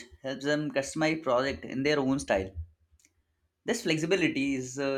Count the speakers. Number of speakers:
1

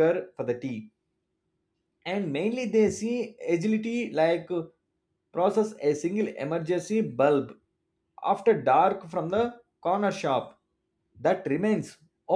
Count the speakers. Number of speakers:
1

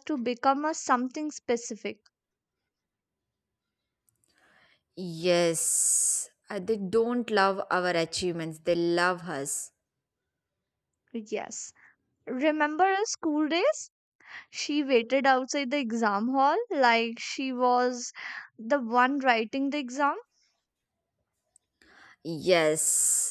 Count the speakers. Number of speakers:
2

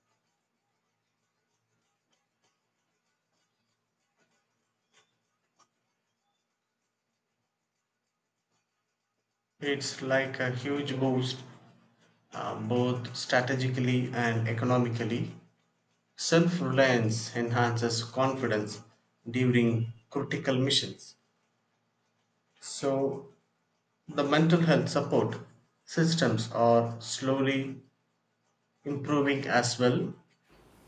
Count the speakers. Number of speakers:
1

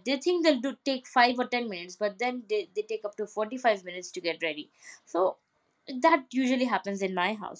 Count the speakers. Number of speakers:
1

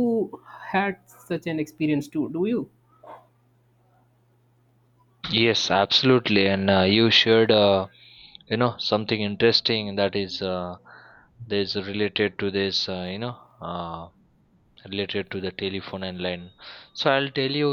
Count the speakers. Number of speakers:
2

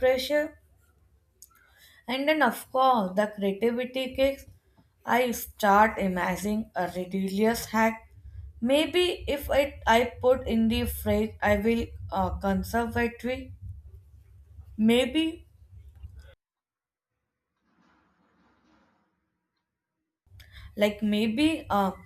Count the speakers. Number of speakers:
1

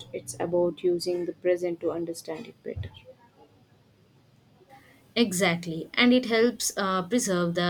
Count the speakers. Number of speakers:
2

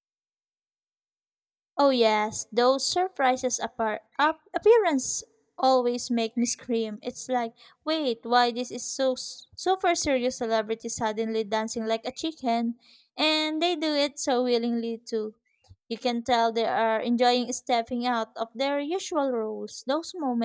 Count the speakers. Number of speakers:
1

